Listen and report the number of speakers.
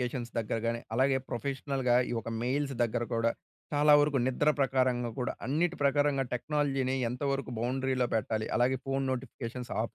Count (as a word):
one